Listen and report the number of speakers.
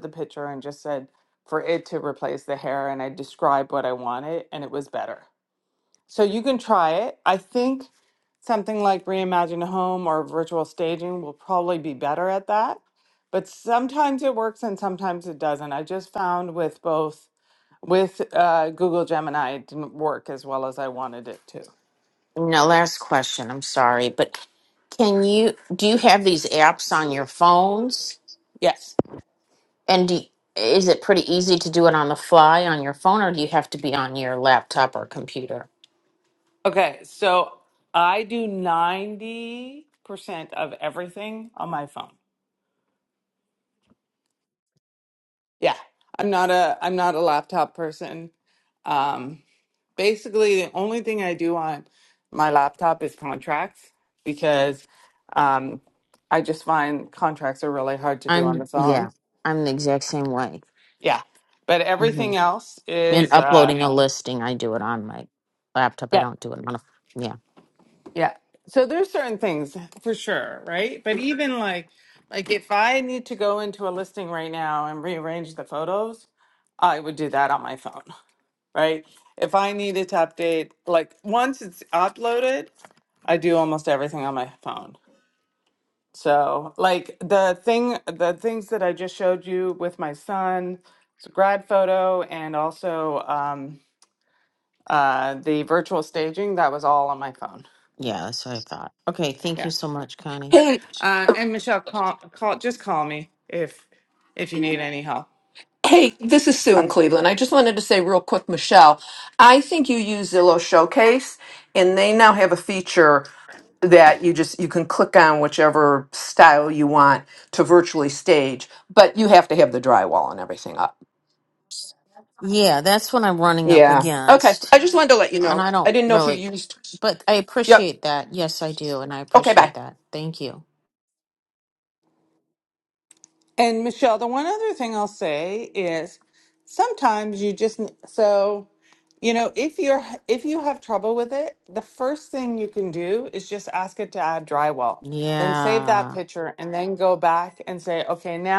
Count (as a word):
three